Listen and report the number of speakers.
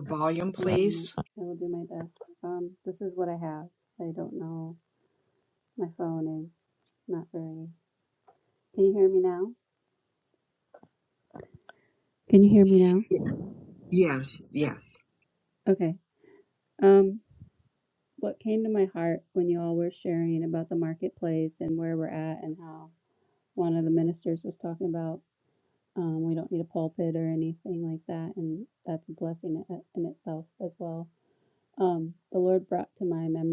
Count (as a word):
two